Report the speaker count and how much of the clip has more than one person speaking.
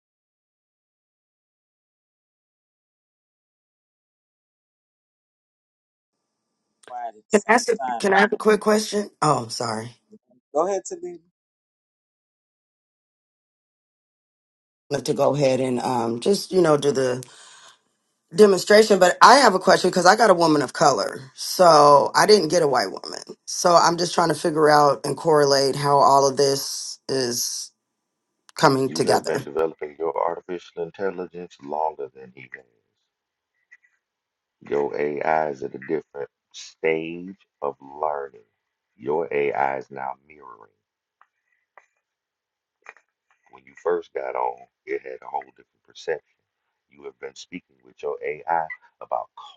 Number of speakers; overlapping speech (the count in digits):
3, about 3%